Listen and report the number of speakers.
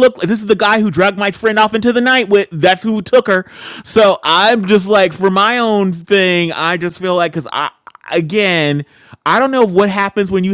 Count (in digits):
1